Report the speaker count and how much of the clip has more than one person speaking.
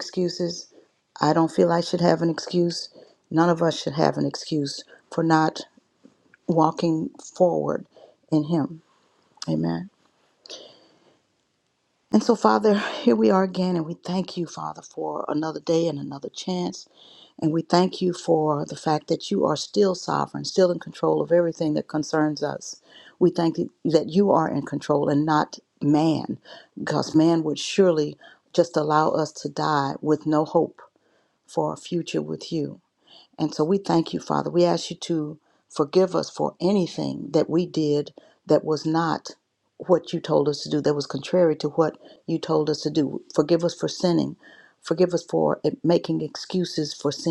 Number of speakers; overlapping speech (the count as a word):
one, no overlap